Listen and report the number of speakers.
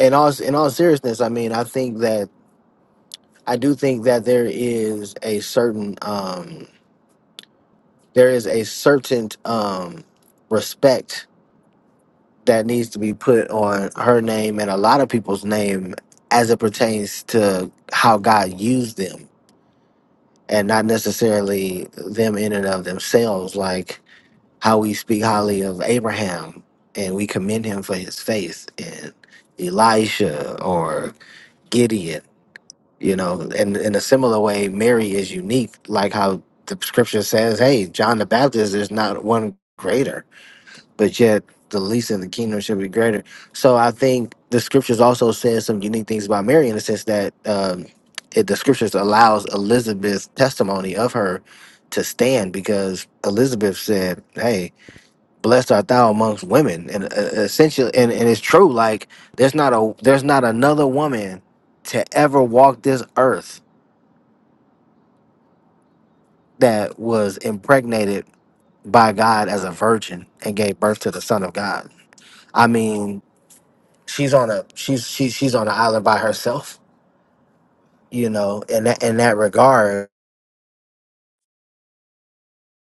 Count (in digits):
1